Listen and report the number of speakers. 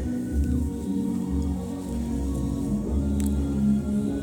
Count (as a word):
zero